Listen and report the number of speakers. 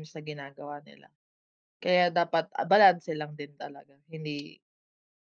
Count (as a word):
one